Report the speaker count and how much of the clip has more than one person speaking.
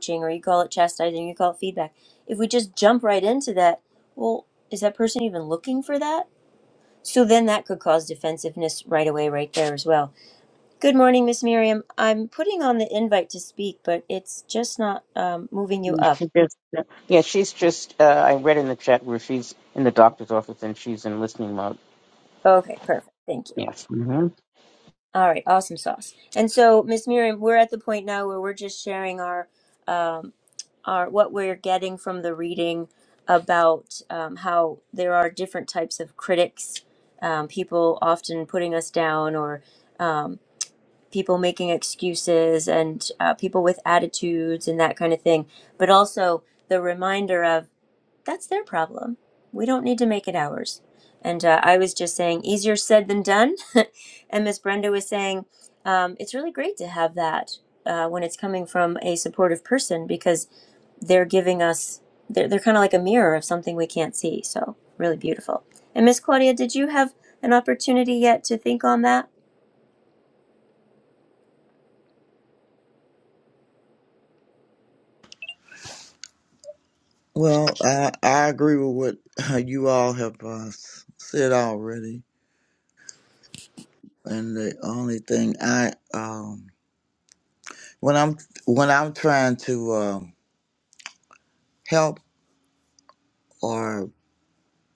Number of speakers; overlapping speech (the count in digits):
3, under 1%